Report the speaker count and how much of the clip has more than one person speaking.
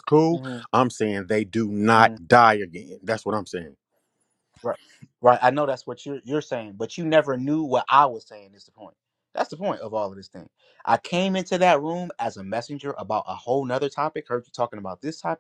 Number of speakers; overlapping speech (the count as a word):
two, about 1%